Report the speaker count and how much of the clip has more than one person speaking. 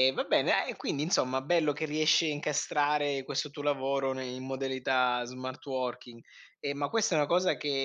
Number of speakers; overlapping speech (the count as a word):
one, no overlap